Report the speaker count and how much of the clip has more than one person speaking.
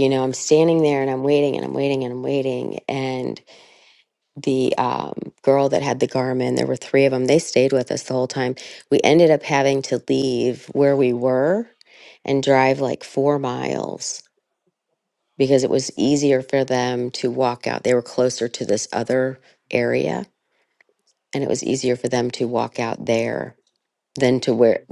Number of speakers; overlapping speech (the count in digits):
1, no overlap